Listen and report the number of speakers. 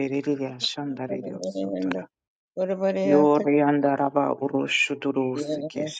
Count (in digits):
2